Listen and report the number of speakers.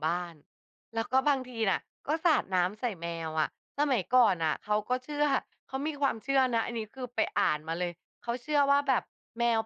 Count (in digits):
1